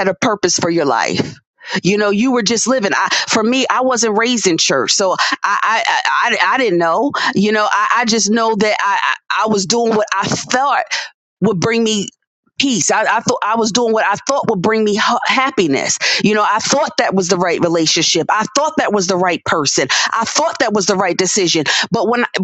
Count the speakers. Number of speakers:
one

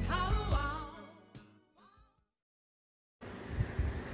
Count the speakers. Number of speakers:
zero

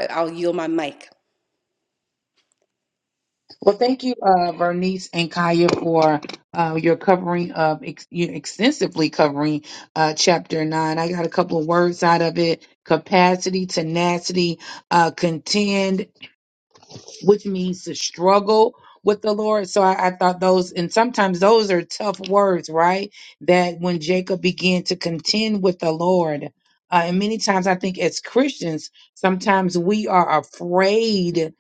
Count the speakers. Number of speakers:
two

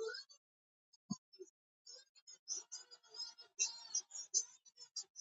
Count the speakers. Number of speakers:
zero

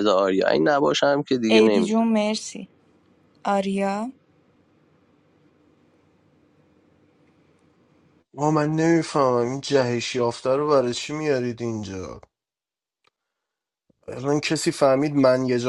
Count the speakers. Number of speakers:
three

